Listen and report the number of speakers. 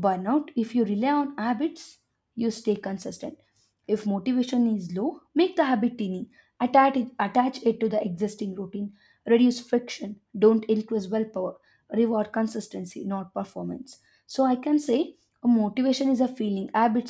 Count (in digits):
1